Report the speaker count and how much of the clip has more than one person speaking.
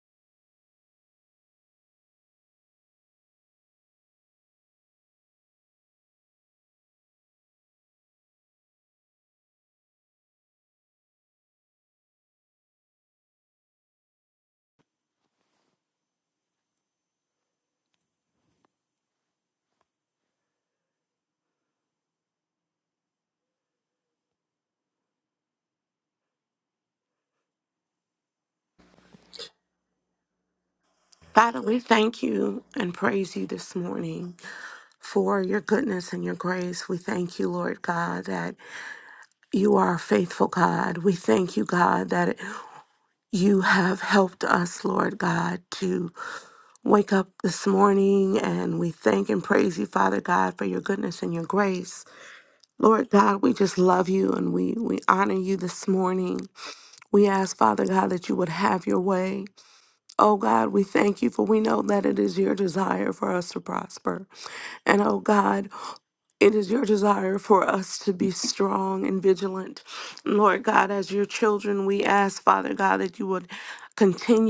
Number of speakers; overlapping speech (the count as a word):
one, no overlap